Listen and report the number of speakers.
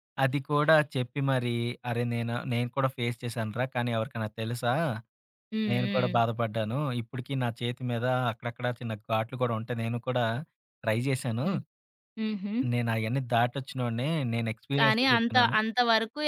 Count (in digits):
2